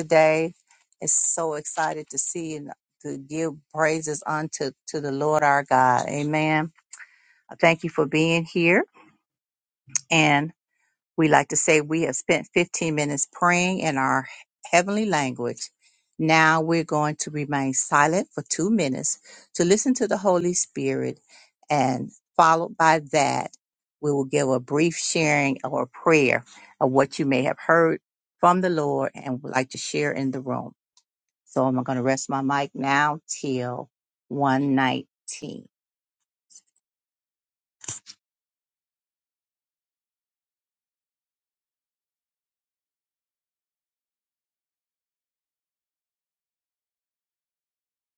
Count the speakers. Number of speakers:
one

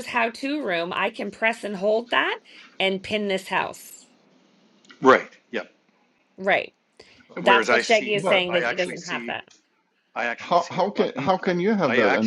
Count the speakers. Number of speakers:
three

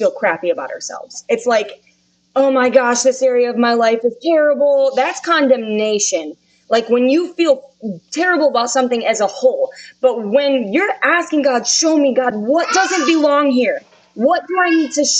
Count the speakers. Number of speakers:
one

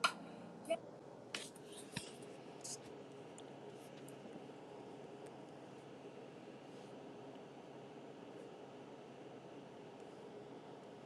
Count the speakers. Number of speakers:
zero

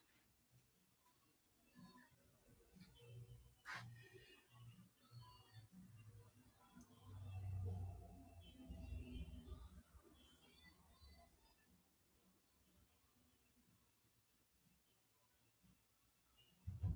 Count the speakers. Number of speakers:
zero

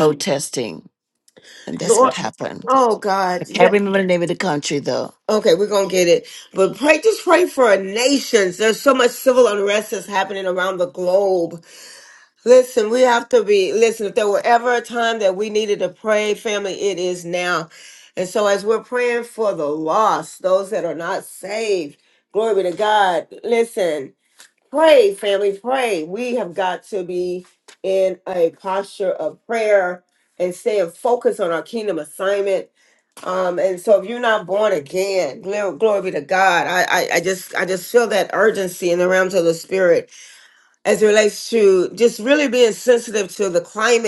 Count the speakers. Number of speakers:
two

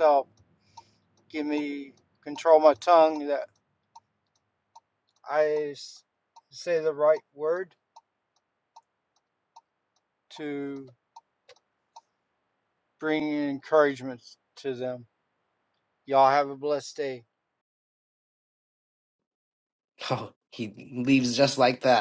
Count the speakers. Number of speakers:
two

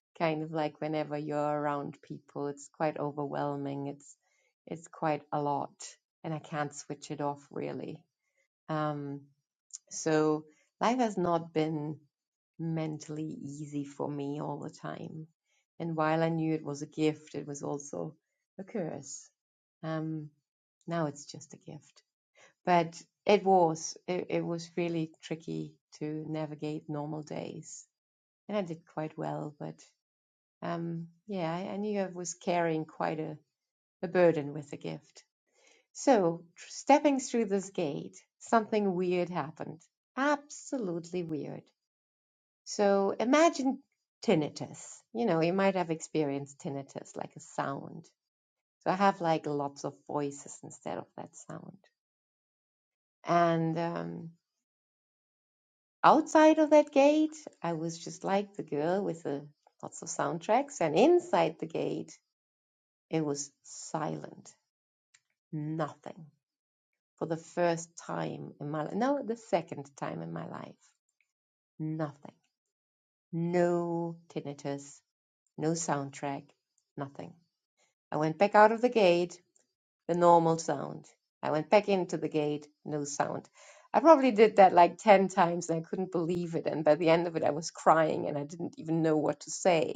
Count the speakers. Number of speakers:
one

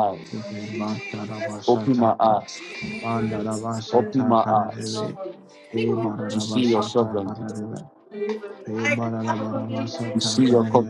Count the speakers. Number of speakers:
three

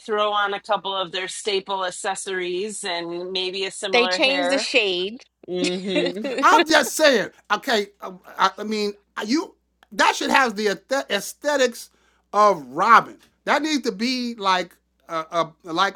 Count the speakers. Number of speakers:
three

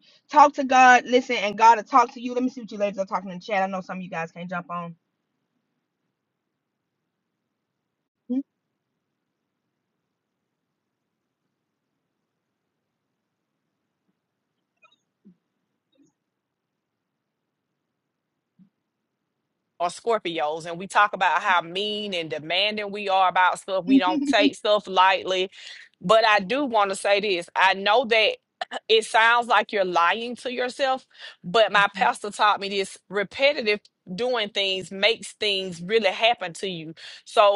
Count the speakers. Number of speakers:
two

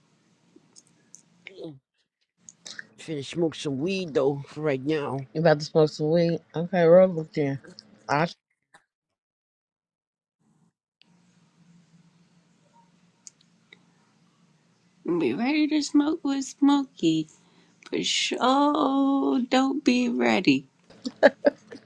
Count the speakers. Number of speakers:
three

